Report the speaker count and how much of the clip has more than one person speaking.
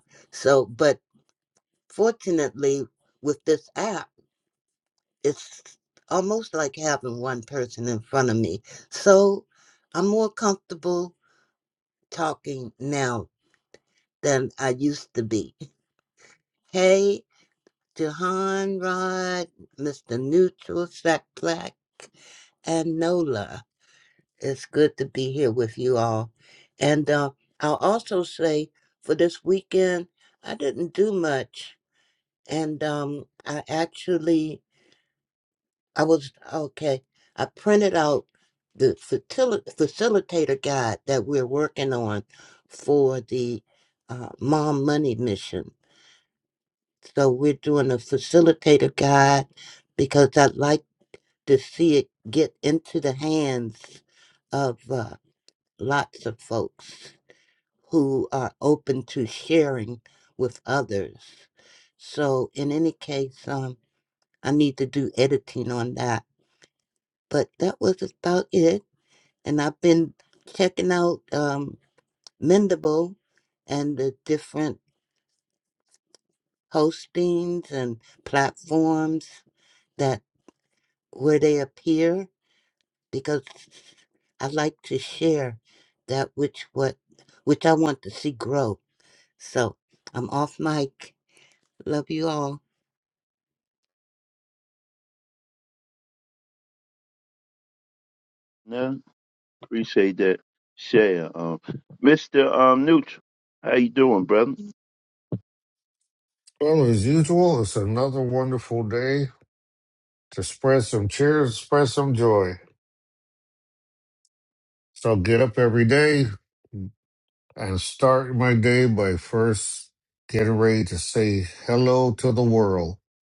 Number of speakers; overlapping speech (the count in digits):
3, no overlap